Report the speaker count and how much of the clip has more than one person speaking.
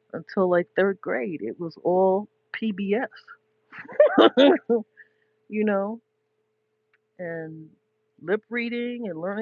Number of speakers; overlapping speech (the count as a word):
one, no overlap